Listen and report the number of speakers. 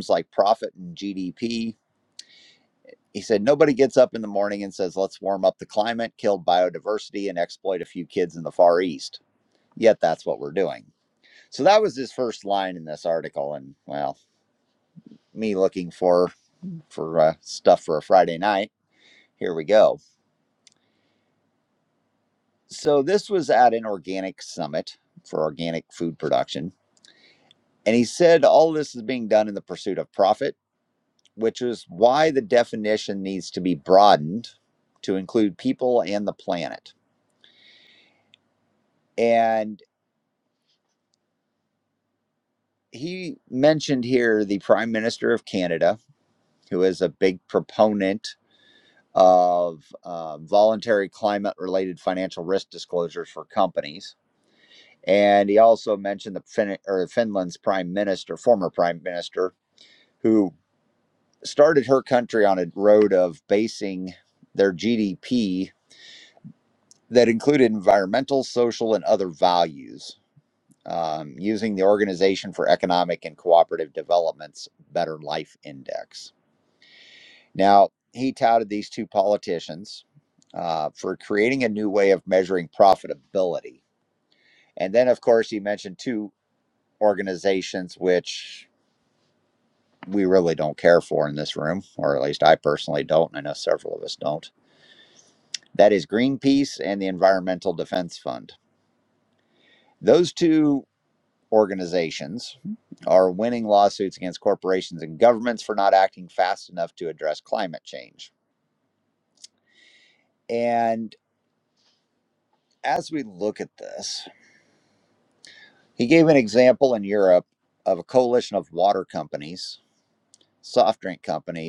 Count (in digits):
1